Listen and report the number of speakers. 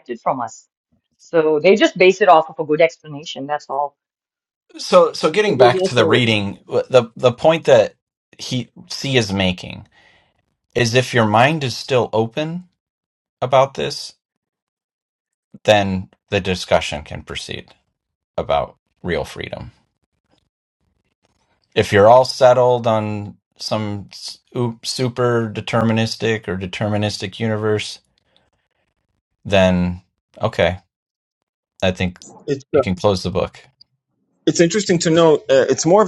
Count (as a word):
three